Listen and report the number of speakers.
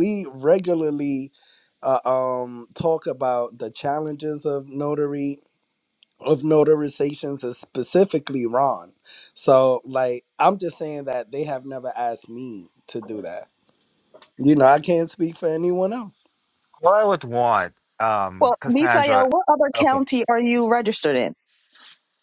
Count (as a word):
three